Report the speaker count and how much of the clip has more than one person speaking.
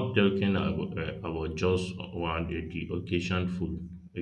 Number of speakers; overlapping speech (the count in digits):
1, no overlap